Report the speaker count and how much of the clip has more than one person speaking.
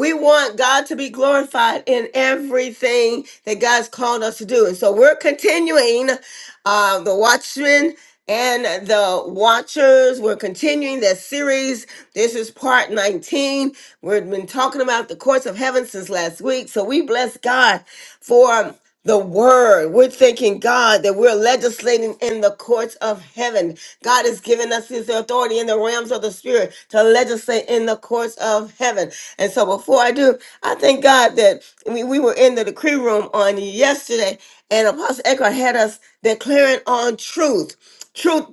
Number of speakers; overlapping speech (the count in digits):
1, no overlap